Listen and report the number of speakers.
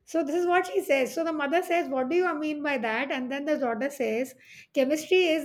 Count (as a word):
one